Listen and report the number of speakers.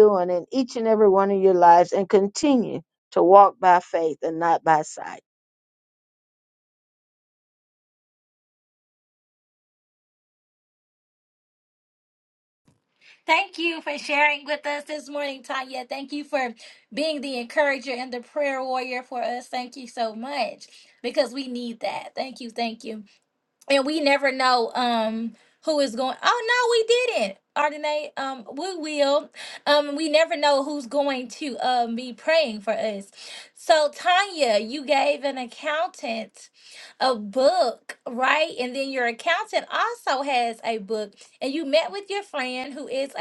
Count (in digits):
2